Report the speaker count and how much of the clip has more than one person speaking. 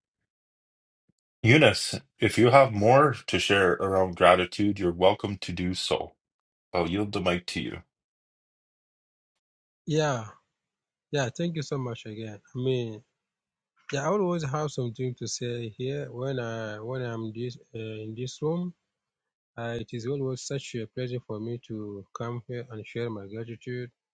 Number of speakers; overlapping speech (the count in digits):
2, no overlap